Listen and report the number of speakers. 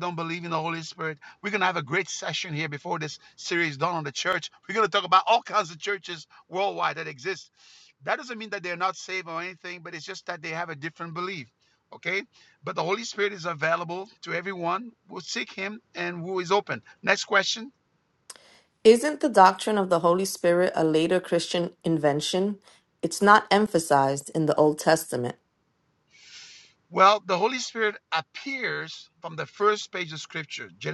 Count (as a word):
two